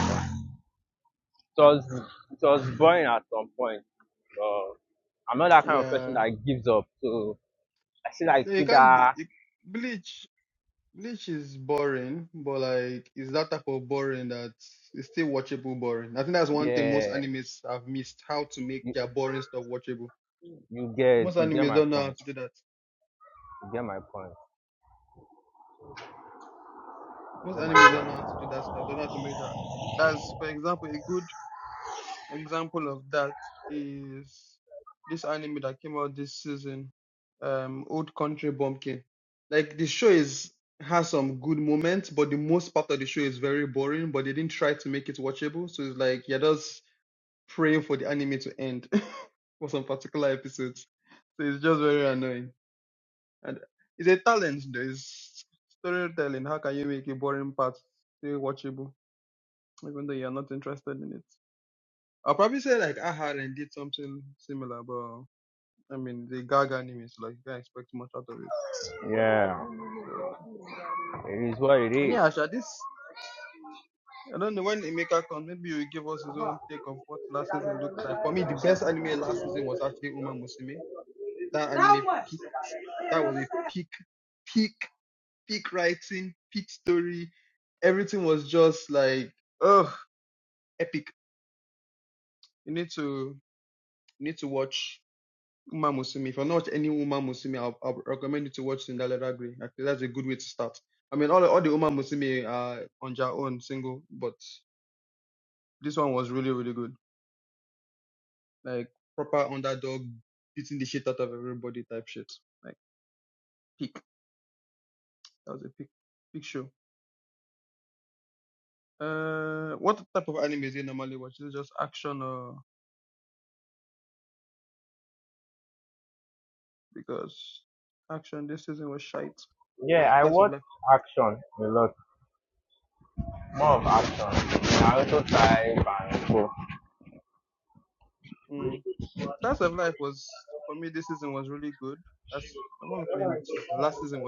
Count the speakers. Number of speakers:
2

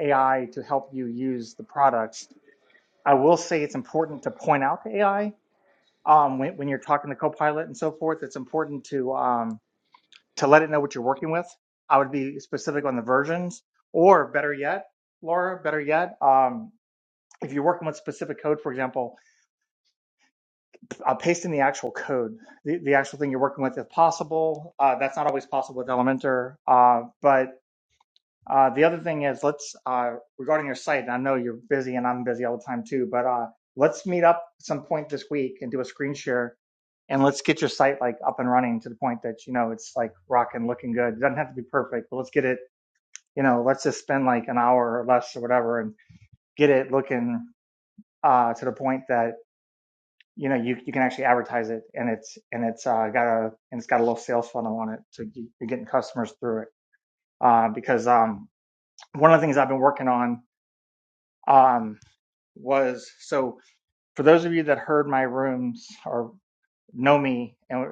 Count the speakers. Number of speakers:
1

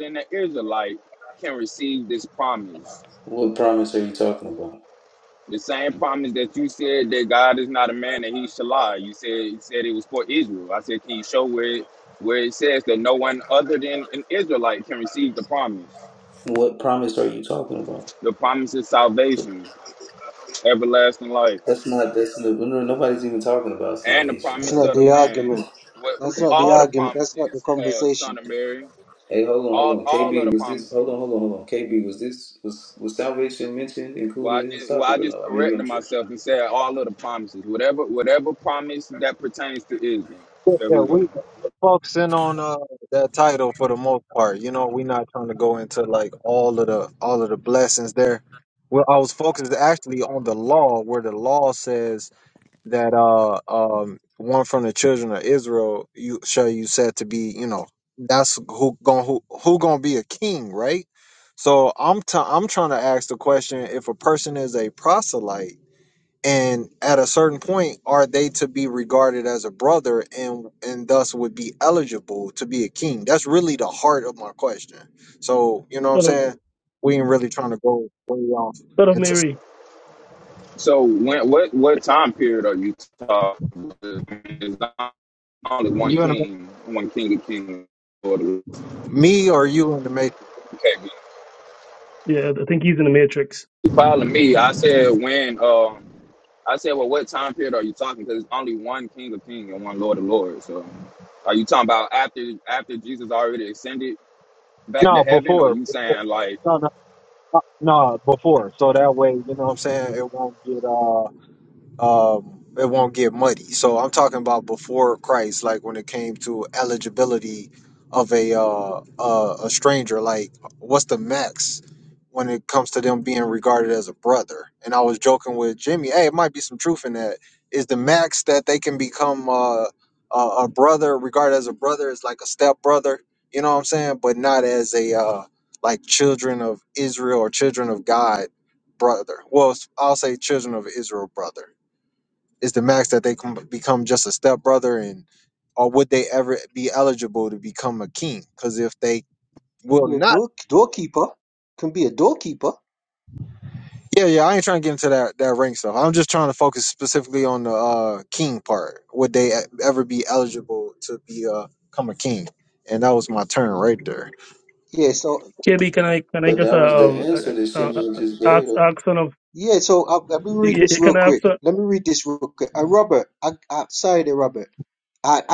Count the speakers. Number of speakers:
5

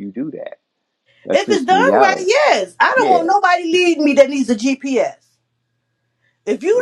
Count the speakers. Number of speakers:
2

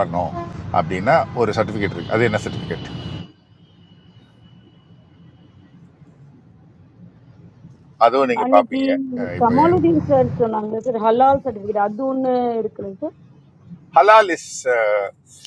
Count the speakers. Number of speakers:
2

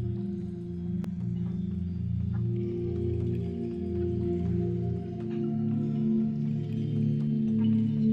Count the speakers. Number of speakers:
0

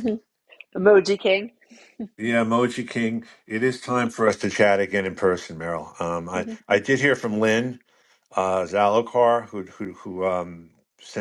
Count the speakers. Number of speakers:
2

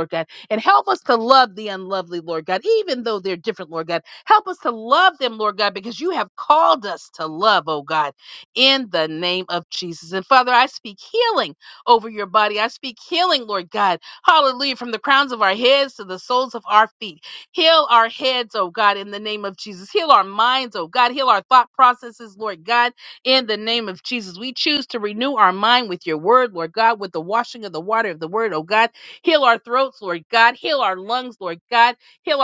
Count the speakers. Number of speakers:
1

